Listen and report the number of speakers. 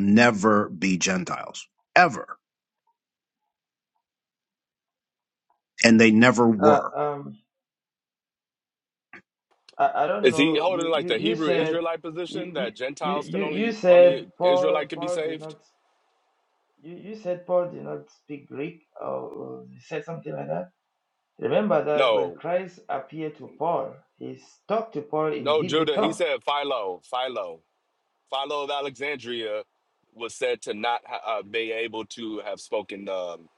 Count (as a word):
three